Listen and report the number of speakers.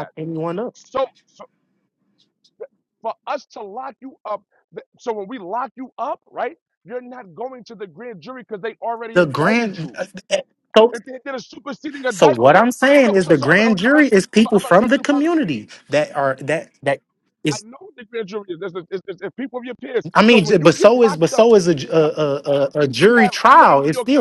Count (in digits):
2